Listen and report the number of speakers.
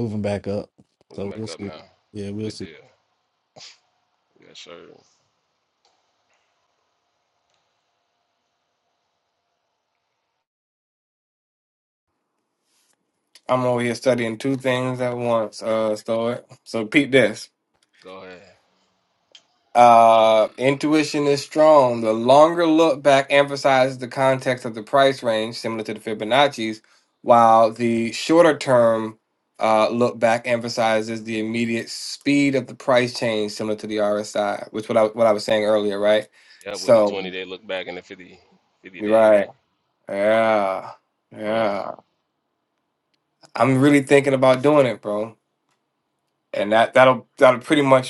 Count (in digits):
3